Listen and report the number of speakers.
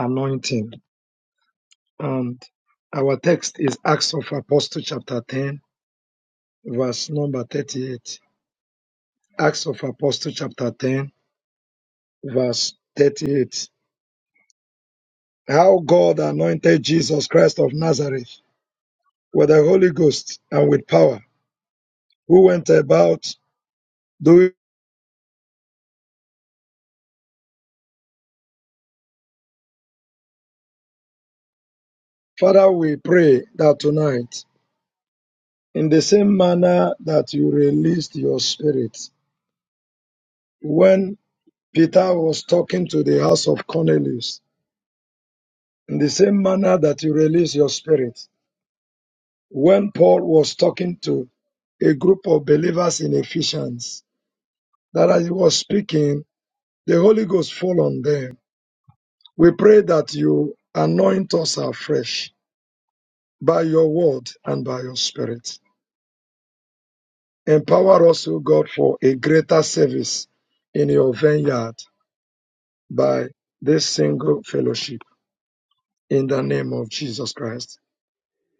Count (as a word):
one